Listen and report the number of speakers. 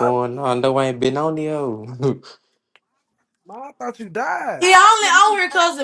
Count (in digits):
3